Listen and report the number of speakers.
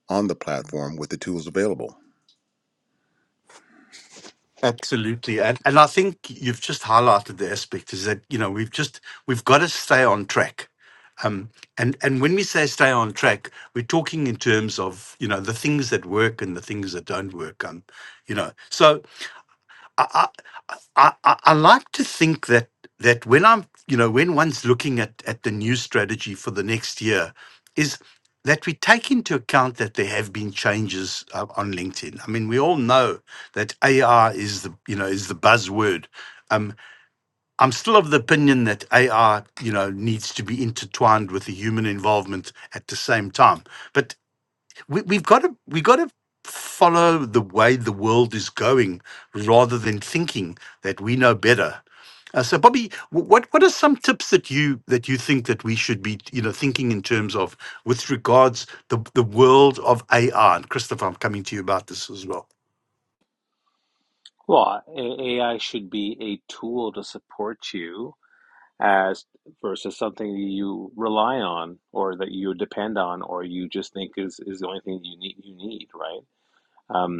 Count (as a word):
three